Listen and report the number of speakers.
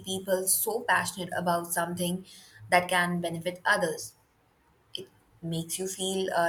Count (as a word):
one